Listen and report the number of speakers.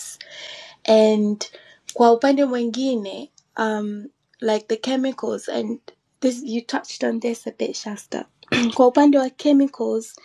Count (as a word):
one